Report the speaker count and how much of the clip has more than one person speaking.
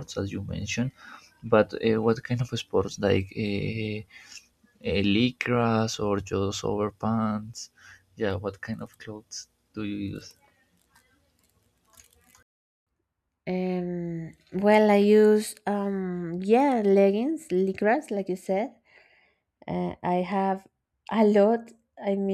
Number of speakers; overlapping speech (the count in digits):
2, no overlap